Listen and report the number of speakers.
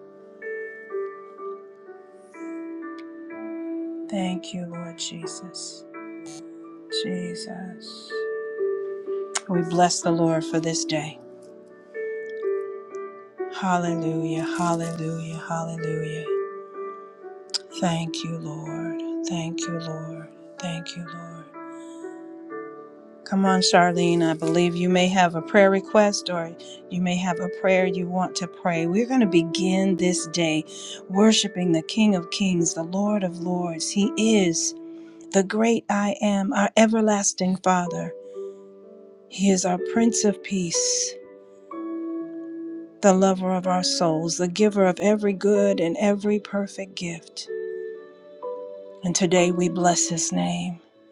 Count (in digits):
1